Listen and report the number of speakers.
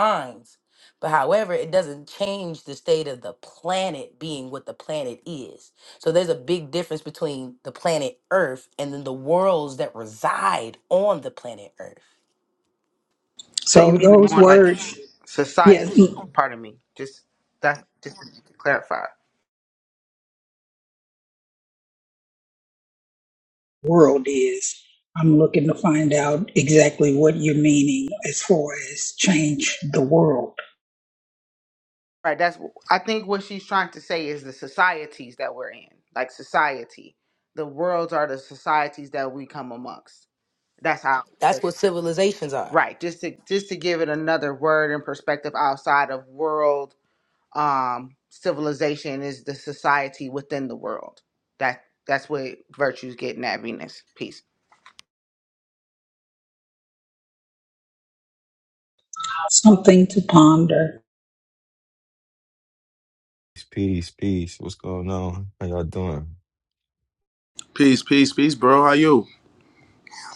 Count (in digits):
5